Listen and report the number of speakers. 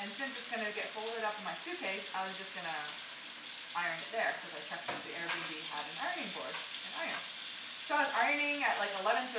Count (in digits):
1